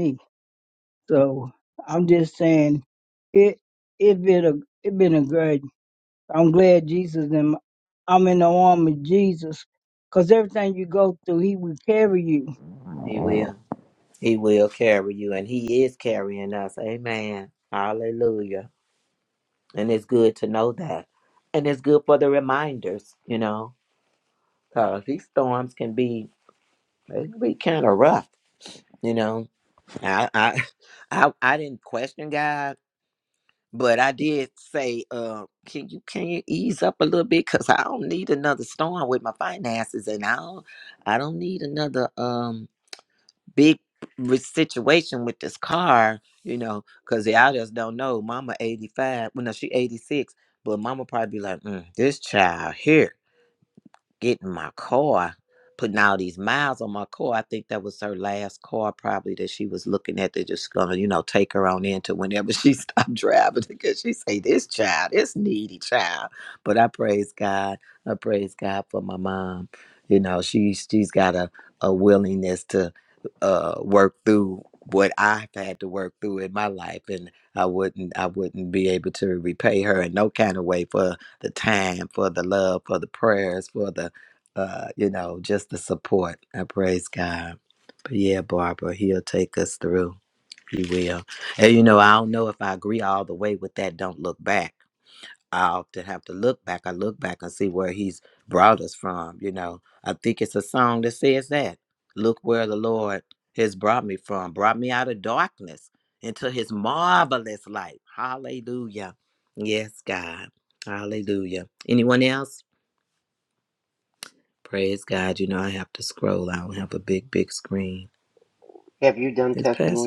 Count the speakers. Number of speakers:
three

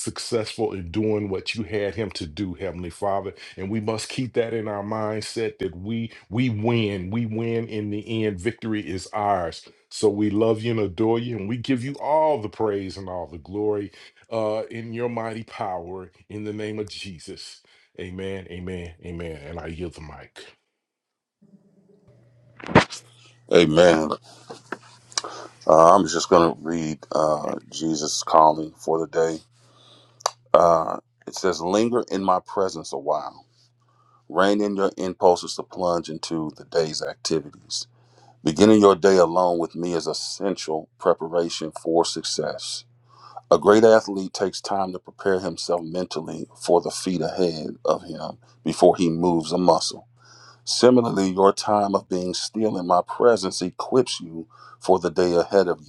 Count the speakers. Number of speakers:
two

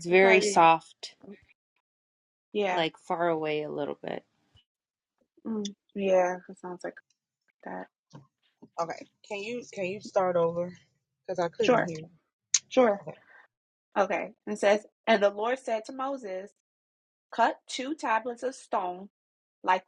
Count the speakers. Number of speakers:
three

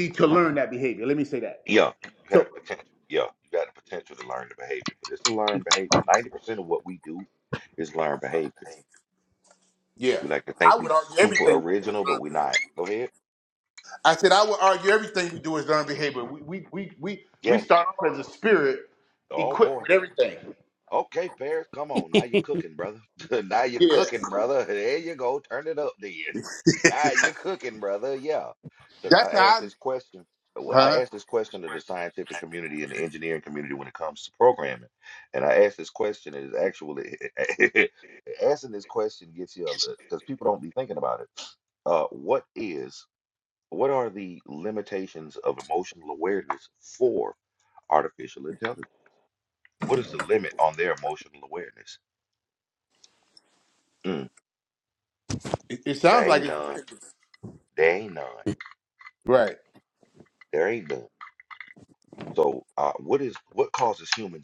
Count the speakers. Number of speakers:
two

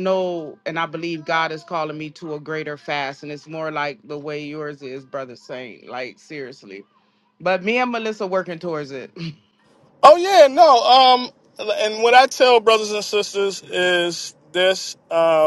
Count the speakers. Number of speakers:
two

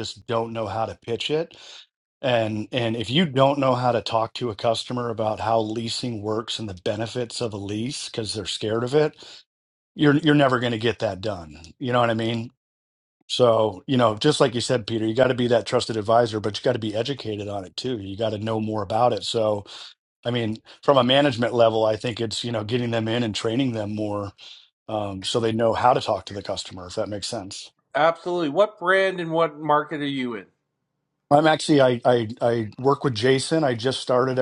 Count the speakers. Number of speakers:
two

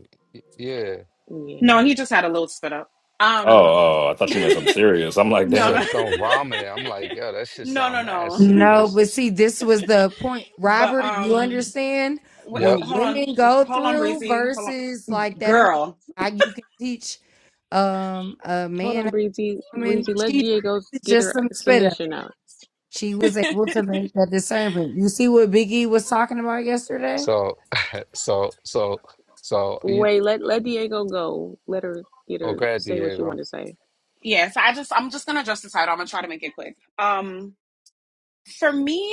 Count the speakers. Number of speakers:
five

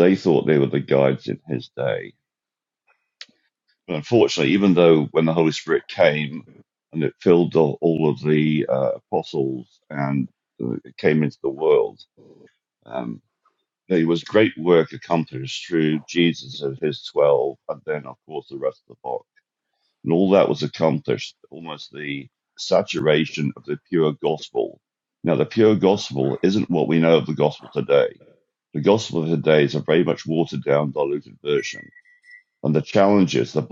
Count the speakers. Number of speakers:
one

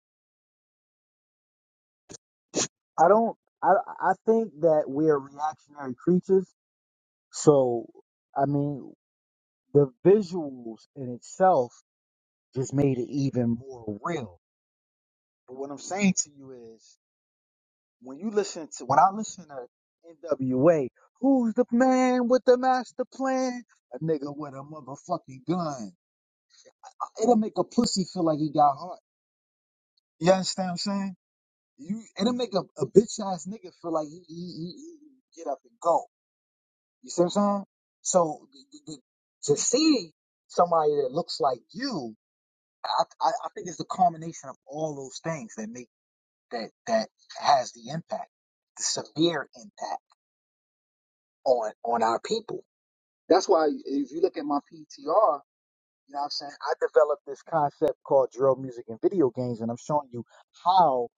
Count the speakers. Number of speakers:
one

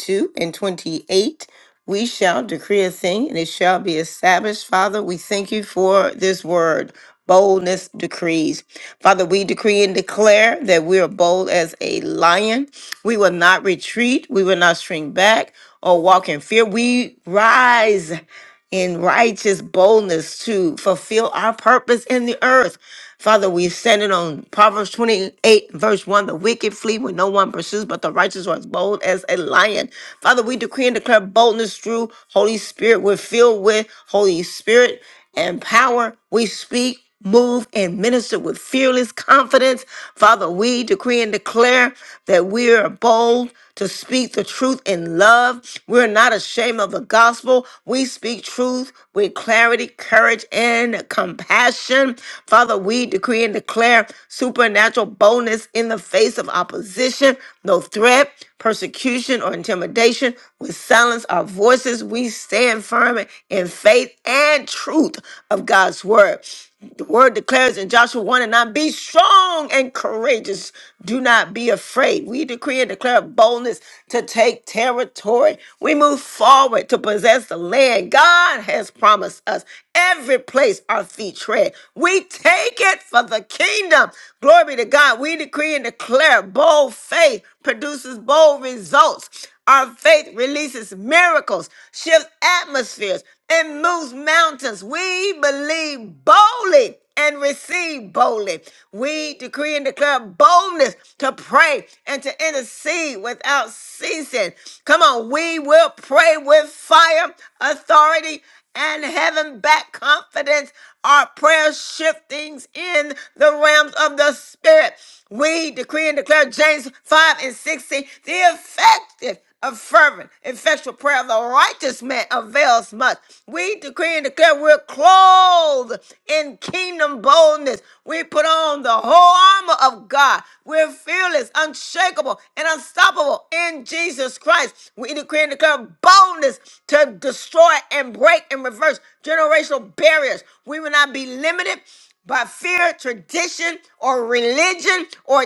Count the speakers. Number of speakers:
one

